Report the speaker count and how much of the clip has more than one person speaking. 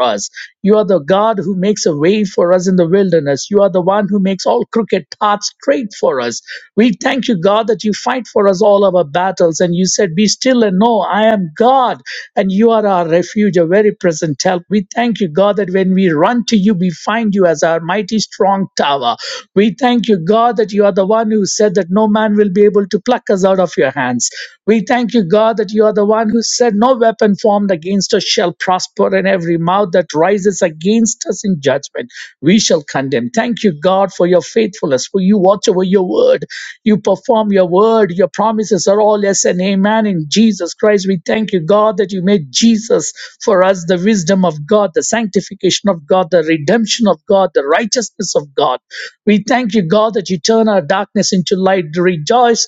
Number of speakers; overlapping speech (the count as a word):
one, no overlap